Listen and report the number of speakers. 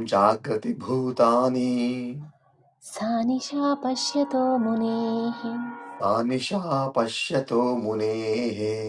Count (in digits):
2